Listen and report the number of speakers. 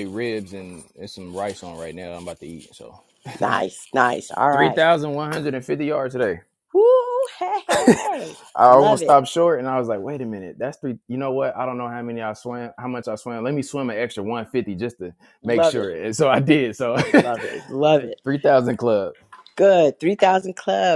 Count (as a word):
two